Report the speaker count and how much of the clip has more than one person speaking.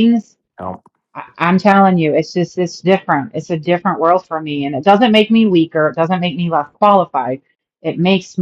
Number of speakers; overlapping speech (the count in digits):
1, no overlap